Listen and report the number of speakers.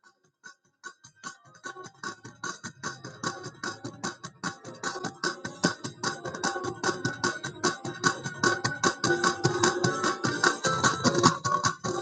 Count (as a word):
zero